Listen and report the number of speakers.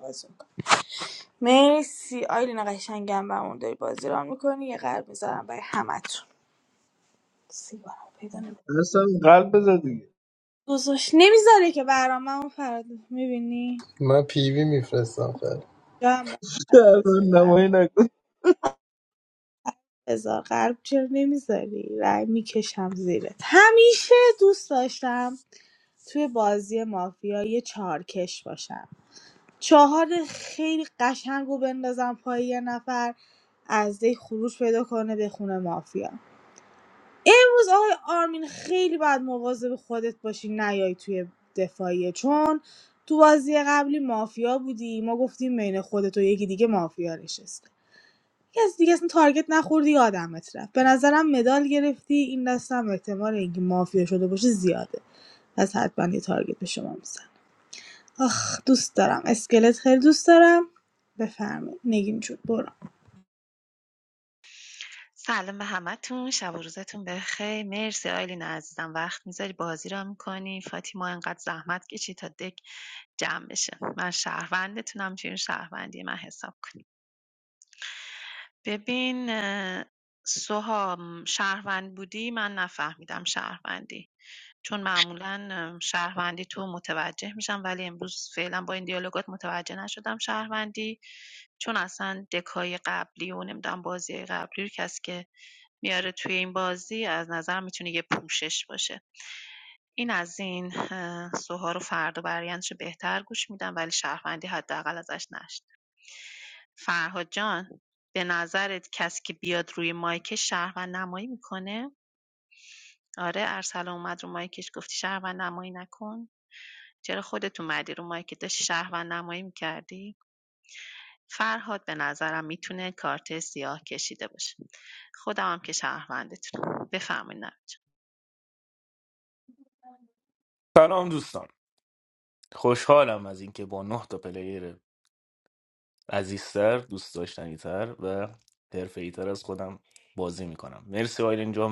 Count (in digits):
5